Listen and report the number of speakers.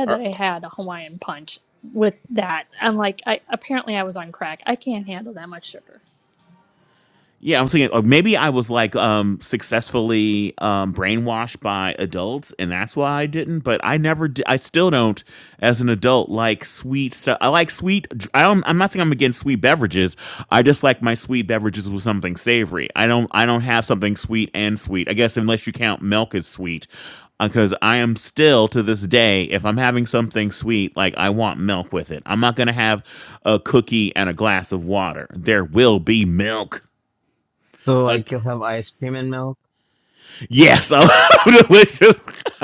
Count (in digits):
3